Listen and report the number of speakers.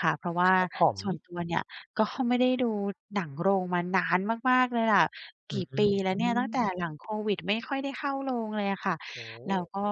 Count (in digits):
2